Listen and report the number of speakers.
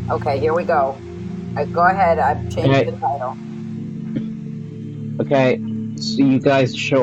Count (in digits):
2